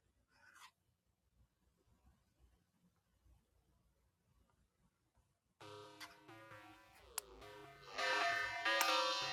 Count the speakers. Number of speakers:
zero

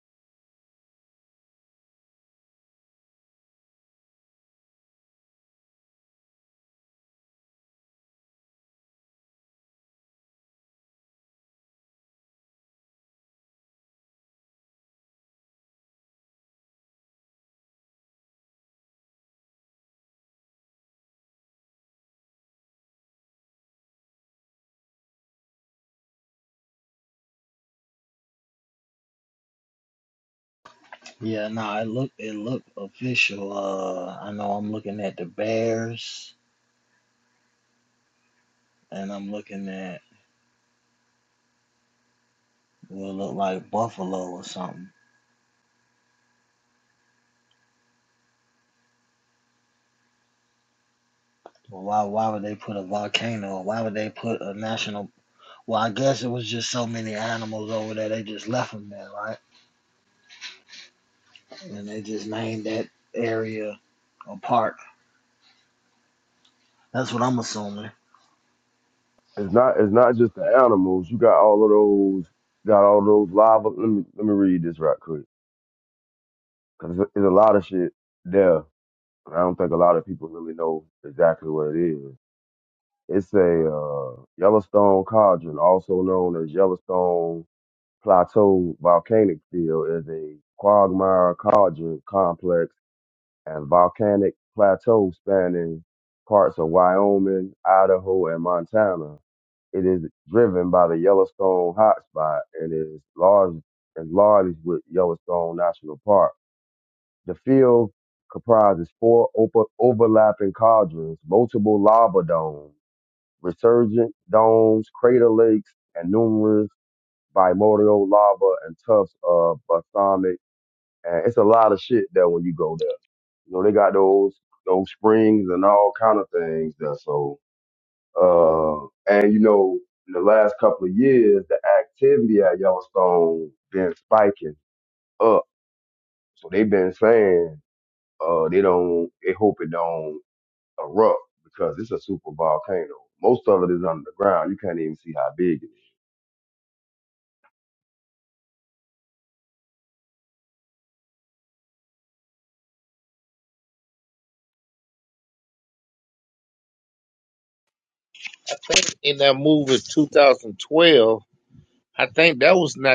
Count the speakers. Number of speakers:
three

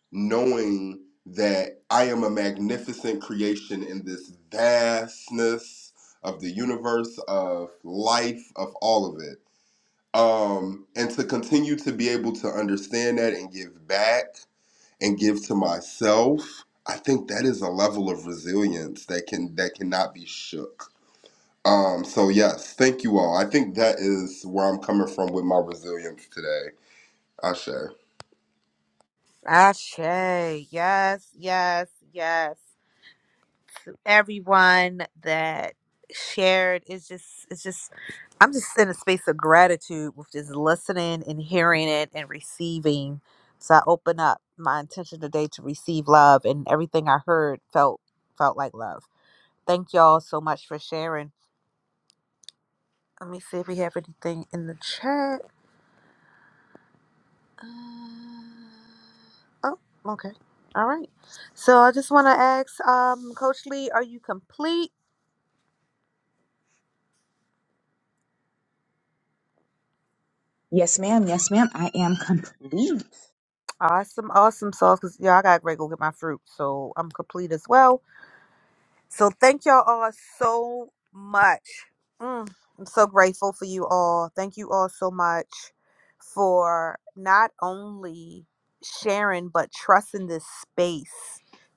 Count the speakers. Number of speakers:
three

